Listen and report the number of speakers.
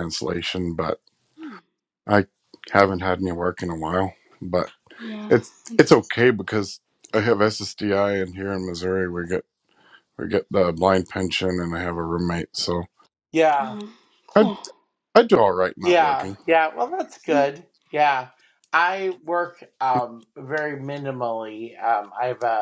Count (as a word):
three